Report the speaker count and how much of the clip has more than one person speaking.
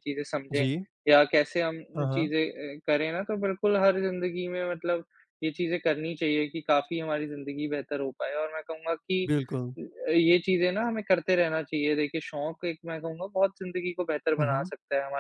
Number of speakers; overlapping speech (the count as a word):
two, about 6%